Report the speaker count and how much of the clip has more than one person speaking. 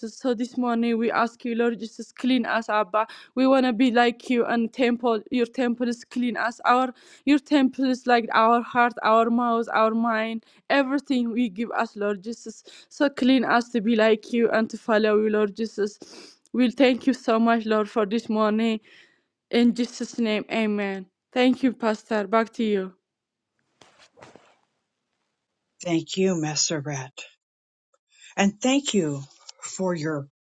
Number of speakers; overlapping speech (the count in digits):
2, no overlap